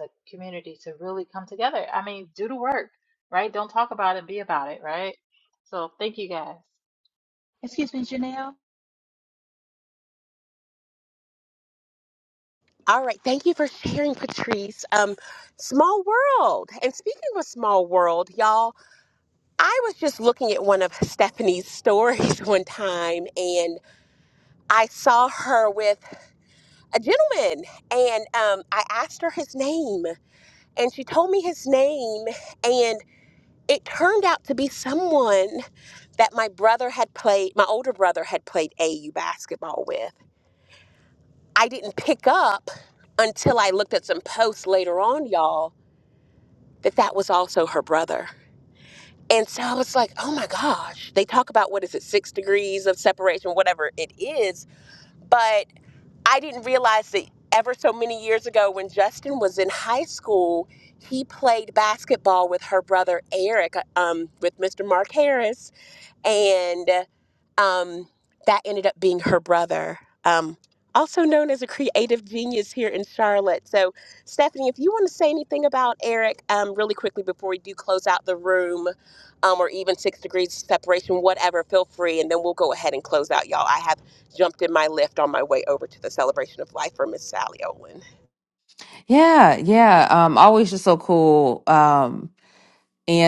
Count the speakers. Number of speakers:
three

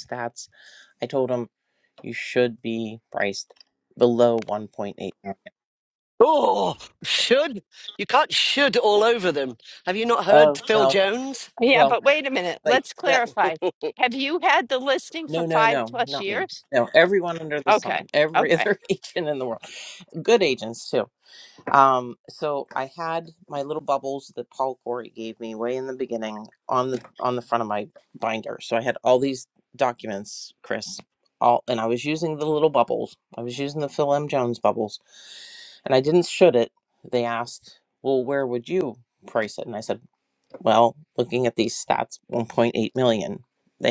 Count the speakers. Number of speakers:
three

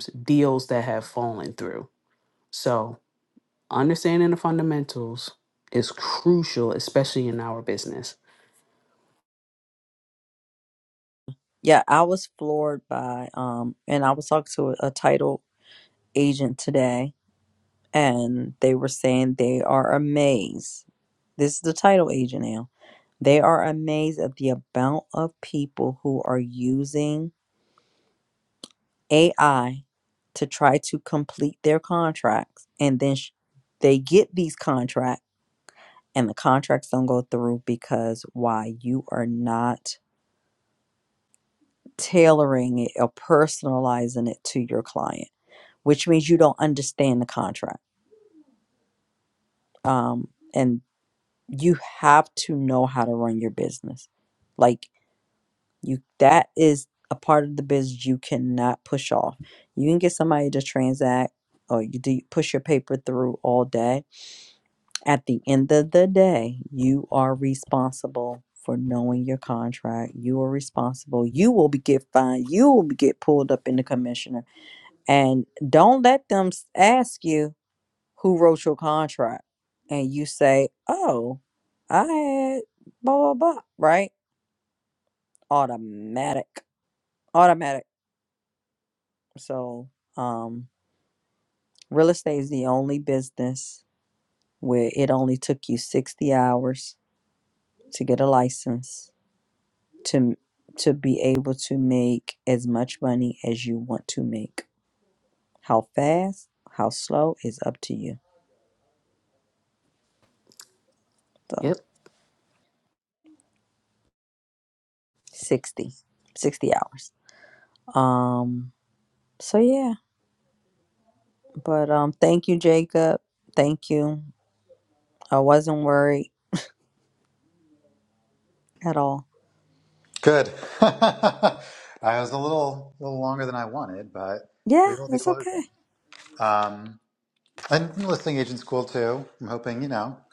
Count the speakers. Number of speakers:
three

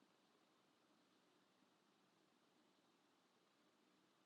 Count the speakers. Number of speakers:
zero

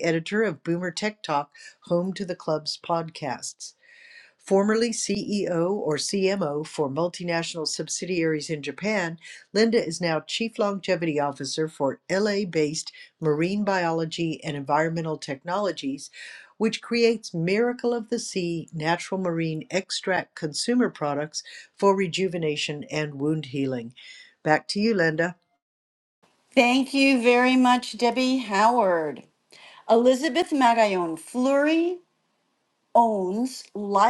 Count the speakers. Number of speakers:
two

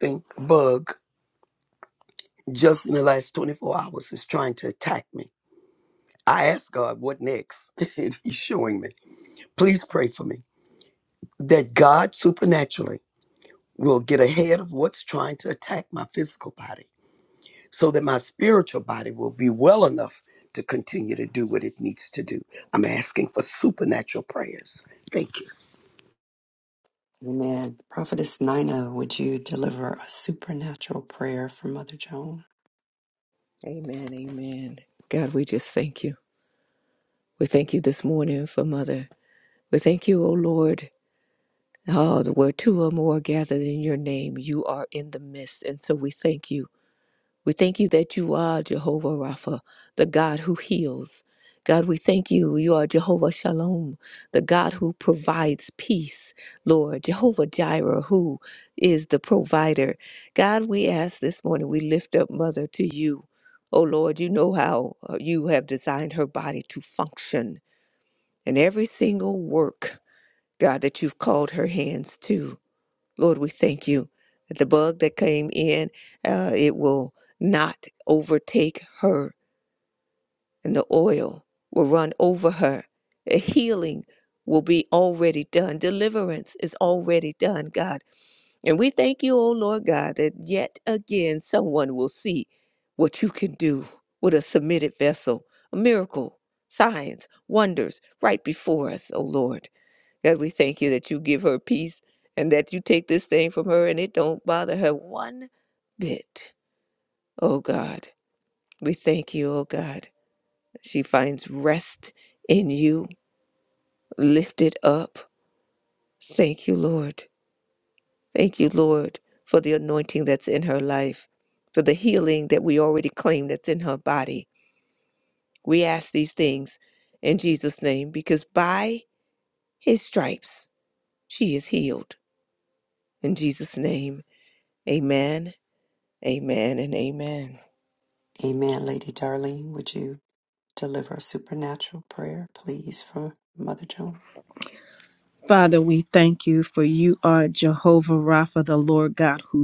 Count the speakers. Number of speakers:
four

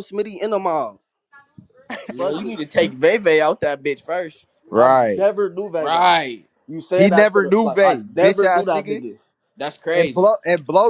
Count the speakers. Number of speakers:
three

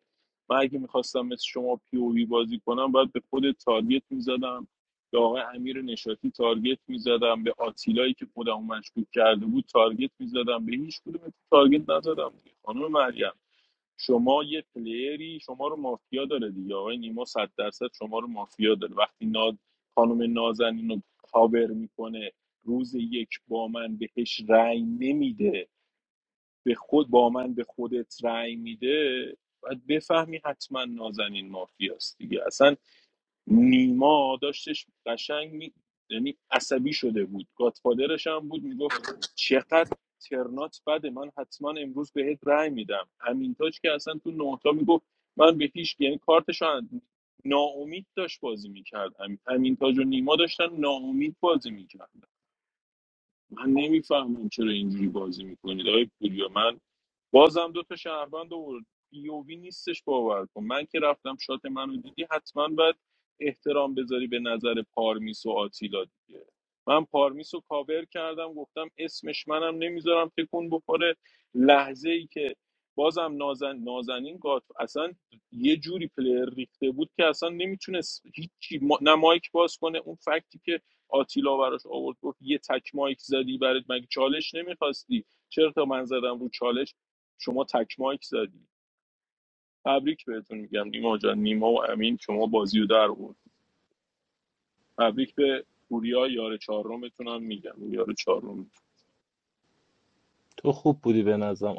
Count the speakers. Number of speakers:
two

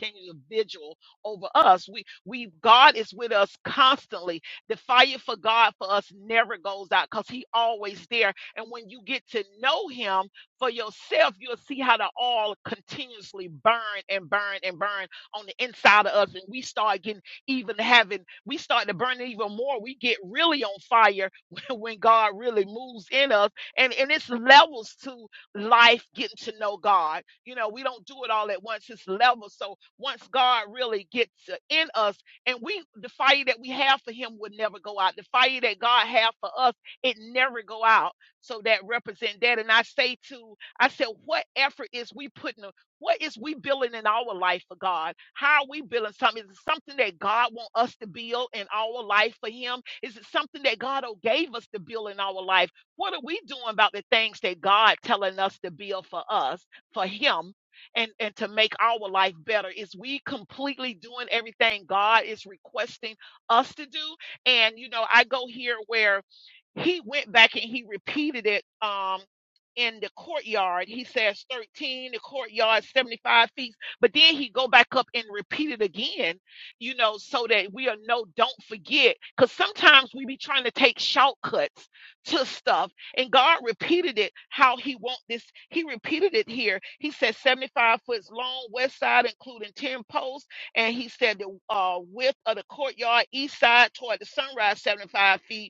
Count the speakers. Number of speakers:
one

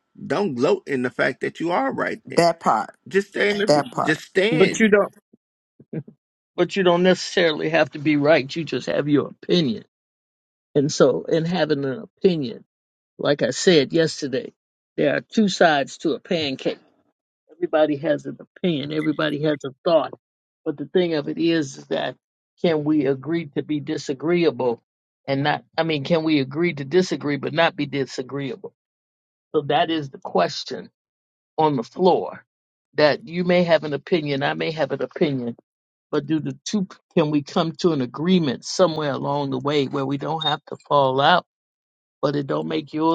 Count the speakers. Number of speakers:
three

